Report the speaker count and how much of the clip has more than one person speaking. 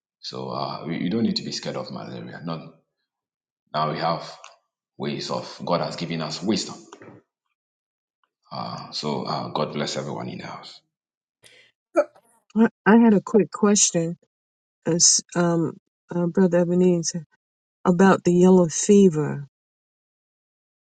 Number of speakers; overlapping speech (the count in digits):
2, no overlap